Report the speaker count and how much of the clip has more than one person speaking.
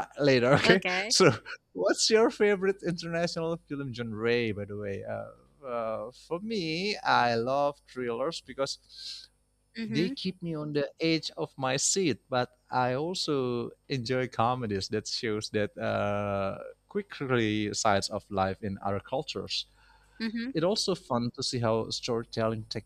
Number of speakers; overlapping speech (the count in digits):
2, about 3%